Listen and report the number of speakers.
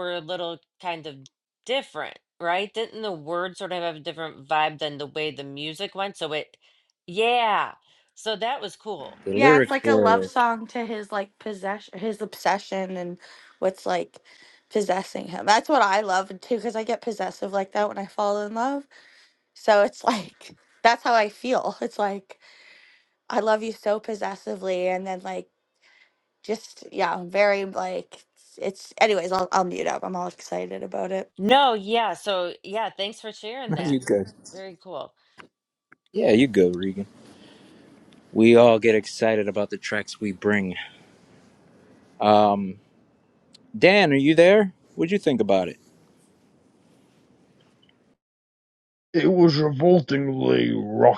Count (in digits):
4